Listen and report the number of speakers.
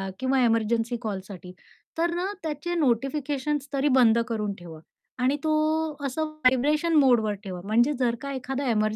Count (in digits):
1